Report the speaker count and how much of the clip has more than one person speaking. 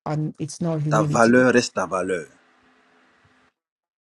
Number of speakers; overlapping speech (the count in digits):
2, about 13%